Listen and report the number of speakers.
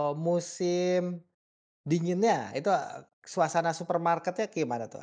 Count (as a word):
one